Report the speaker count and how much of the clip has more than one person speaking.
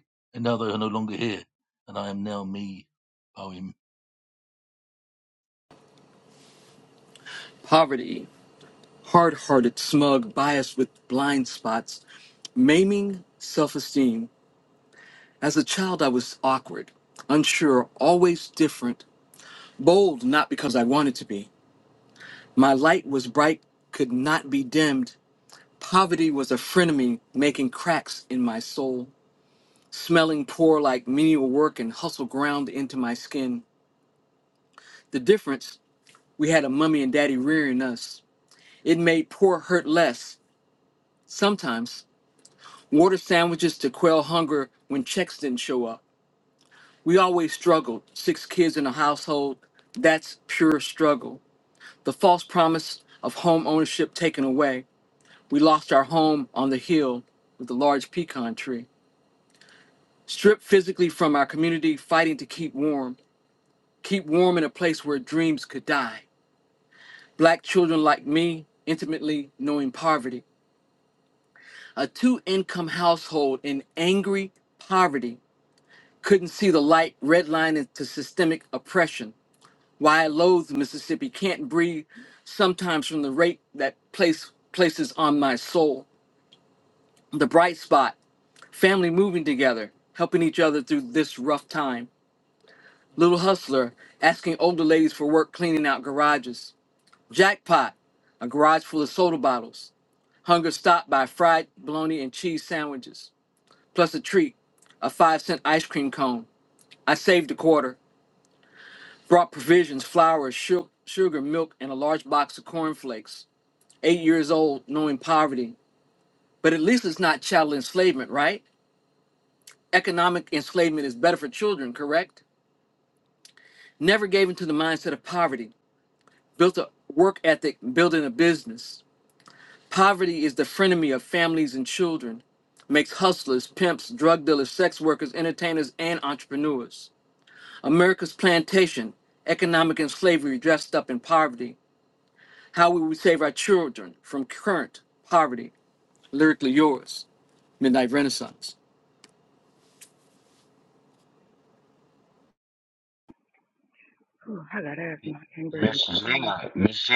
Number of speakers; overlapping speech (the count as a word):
four, under 1%